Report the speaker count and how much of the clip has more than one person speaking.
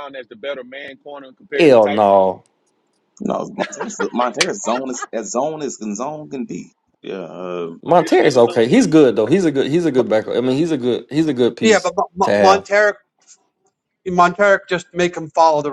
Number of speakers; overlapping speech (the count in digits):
4, about 12%